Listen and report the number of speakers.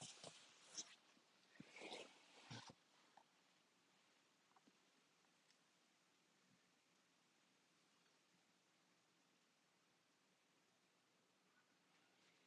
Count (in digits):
0